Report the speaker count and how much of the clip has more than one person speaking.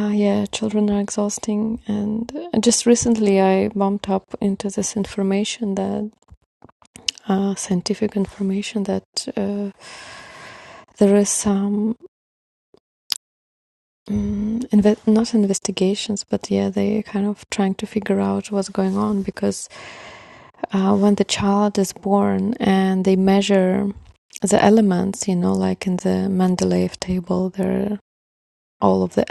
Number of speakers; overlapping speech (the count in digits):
1, no overlap